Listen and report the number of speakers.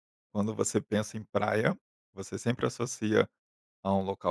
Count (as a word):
one